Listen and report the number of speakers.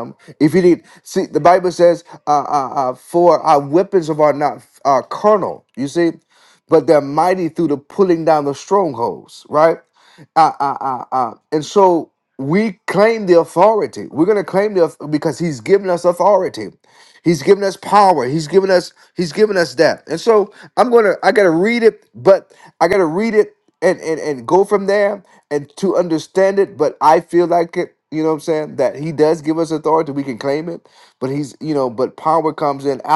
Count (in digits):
1